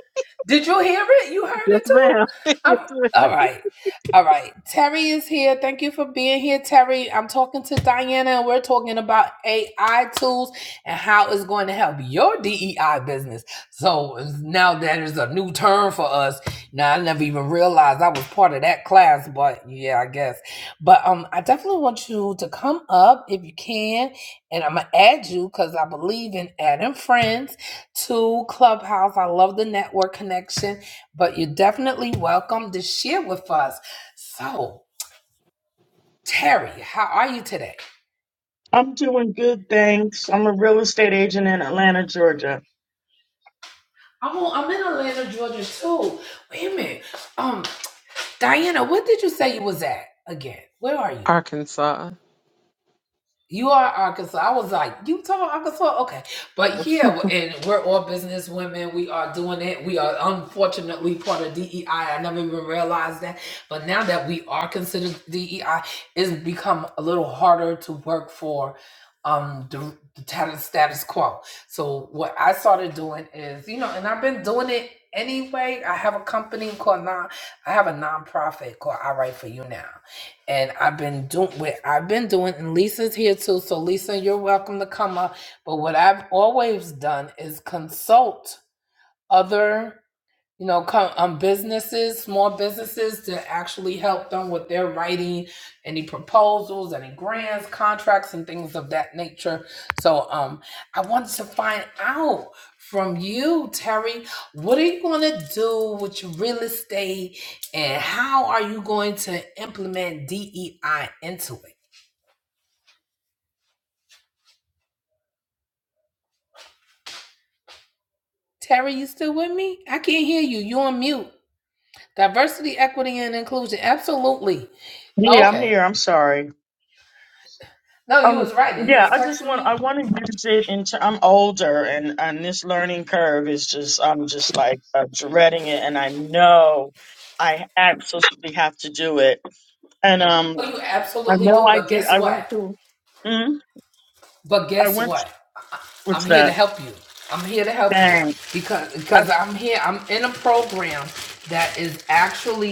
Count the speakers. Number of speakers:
three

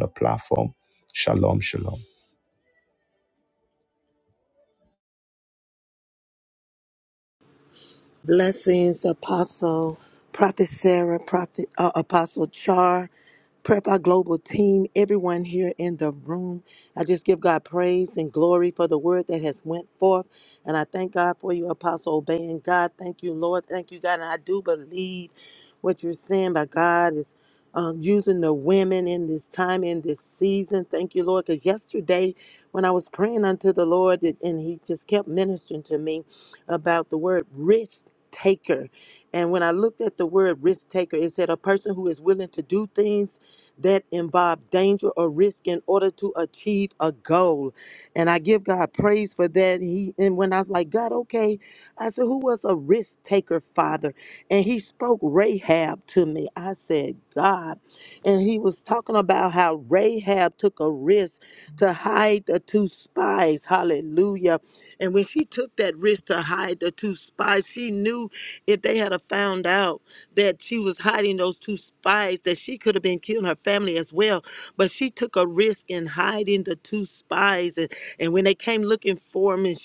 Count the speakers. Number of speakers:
two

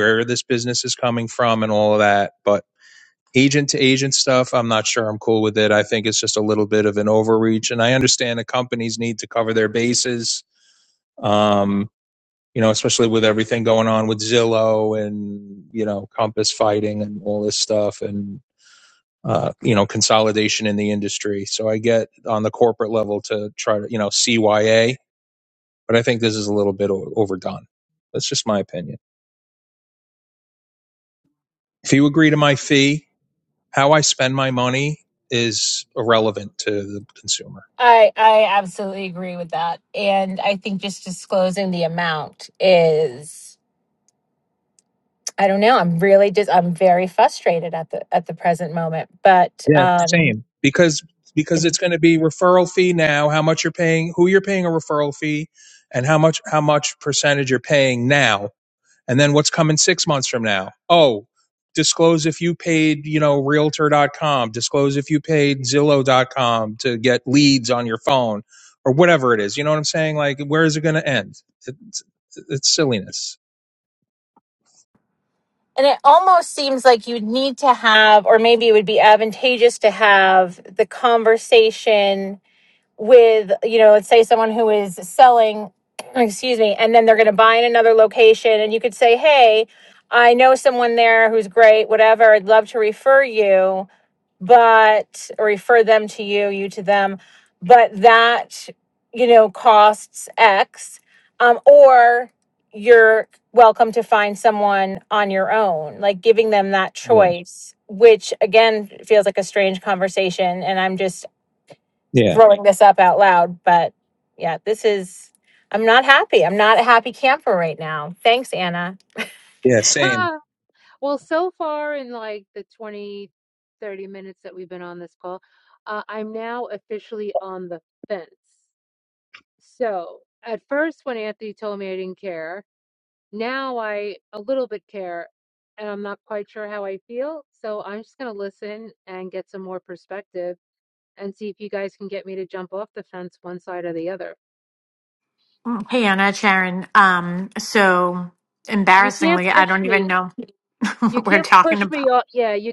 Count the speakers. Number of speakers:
four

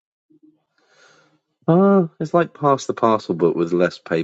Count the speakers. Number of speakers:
one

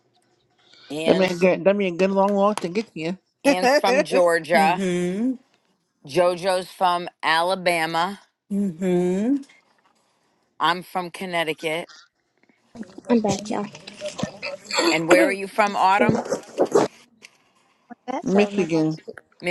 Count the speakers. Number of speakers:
four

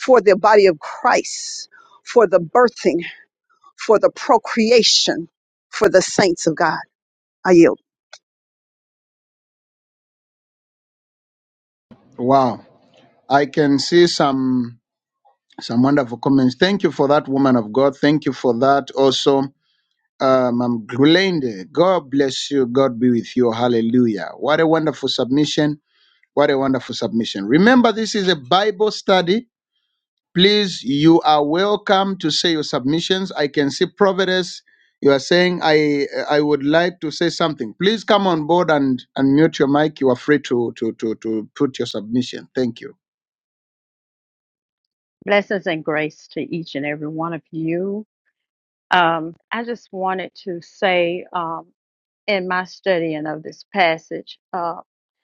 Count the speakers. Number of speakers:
three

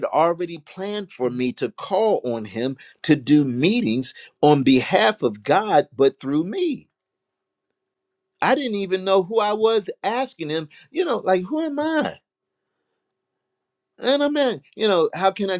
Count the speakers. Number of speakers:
one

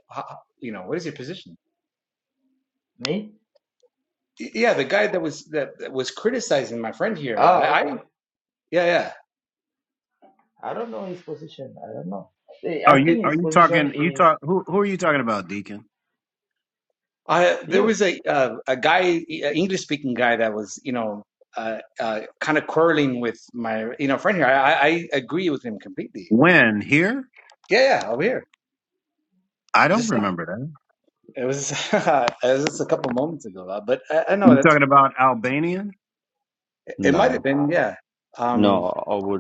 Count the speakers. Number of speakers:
four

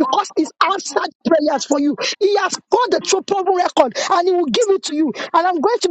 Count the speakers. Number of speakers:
one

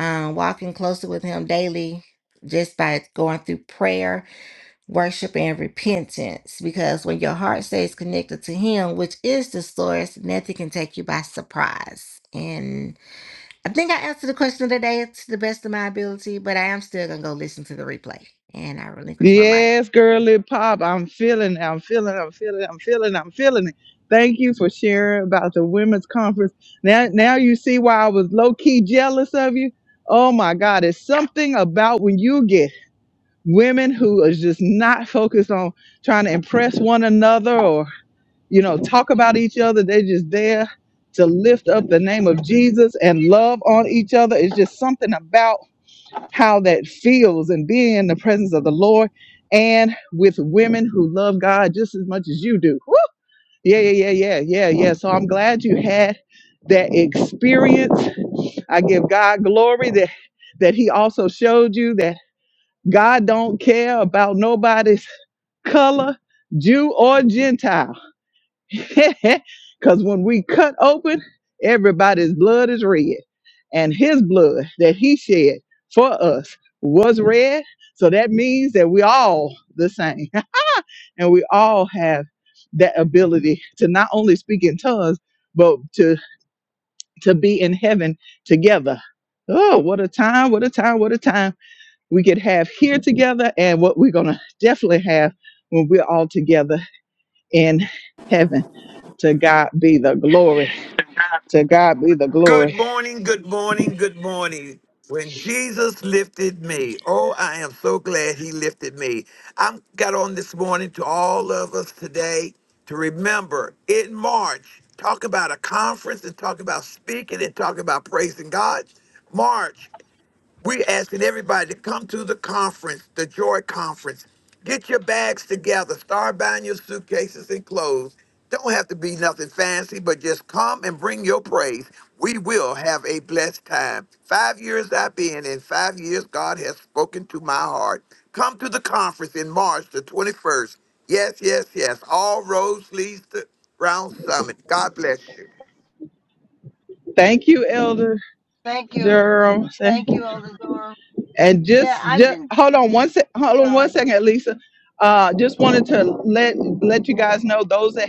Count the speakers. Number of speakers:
four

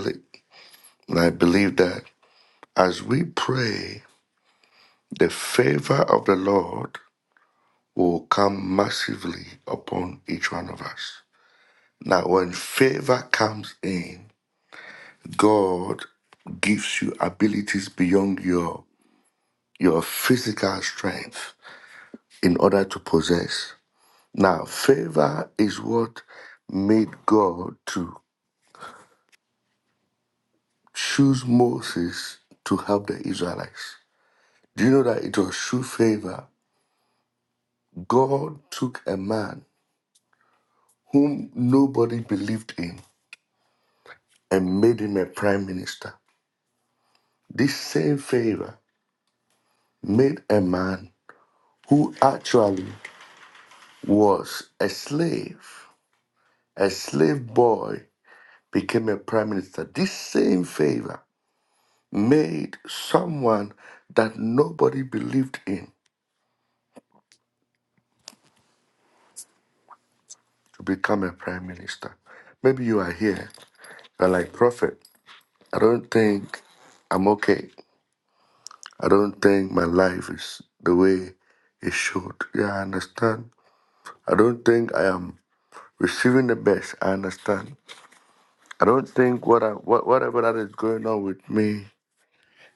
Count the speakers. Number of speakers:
one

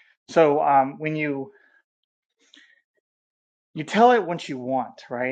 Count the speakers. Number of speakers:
one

